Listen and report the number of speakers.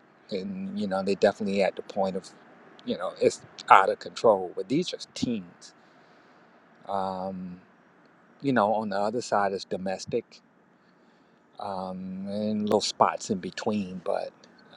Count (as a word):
one